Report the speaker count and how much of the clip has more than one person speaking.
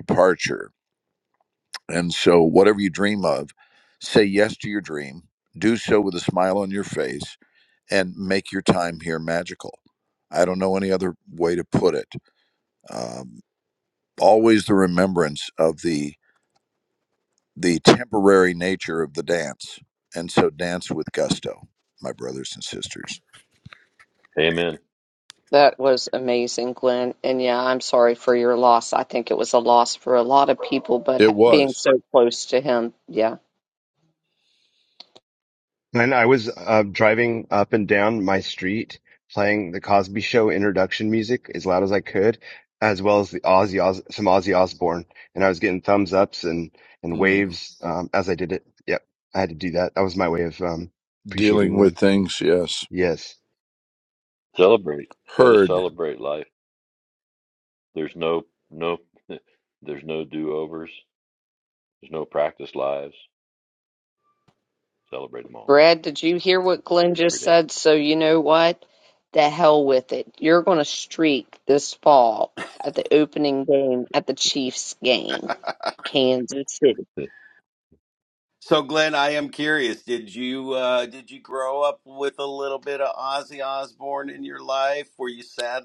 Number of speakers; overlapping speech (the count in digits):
5, about 3%